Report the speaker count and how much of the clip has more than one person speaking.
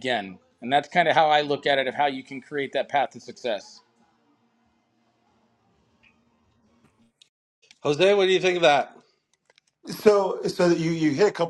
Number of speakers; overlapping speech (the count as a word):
three, no overlap